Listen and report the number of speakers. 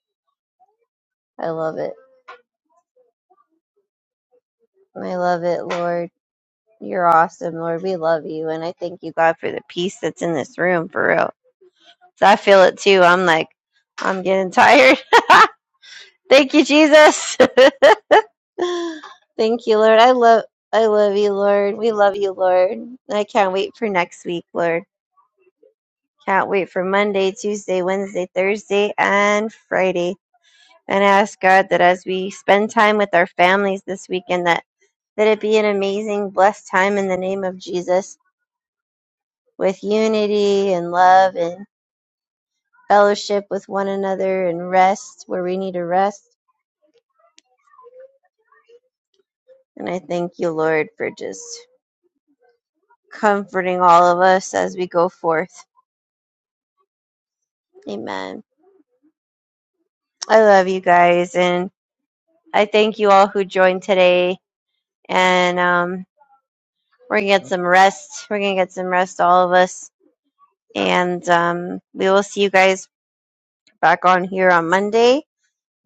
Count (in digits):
1